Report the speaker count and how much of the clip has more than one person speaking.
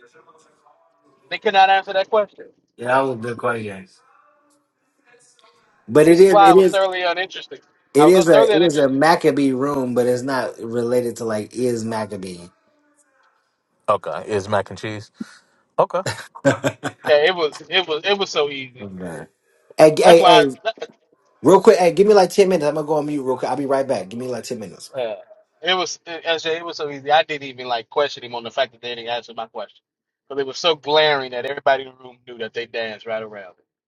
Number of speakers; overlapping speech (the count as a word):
three, about 6%